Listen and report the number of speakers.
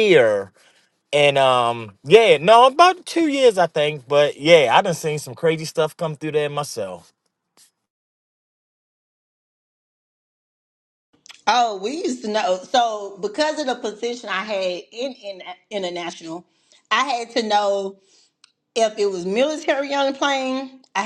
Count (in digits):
2